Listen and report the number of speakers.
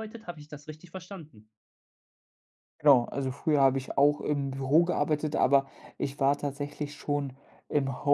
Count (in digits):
2